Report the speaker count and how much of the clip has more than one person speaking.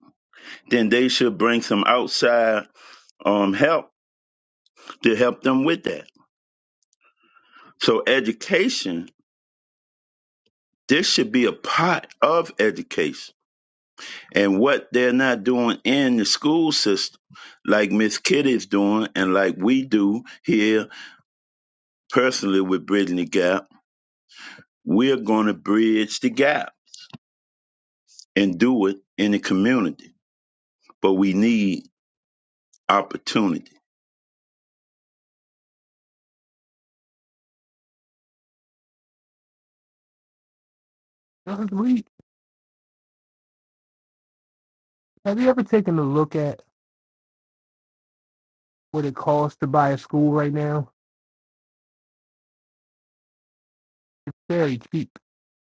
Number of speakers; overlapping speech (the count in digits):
2, no overlap